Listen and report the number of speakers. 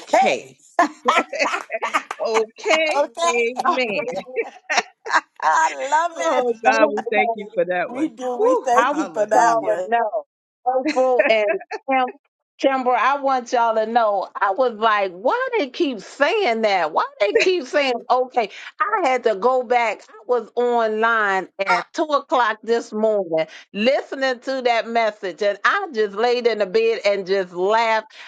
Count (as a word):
three